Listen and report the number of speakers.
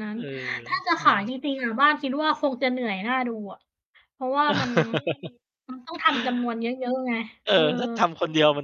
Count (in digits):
2